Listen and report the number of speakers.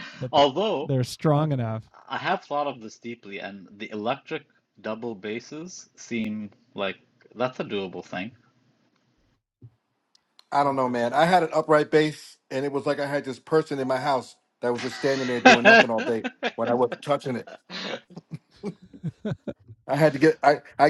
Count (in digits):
3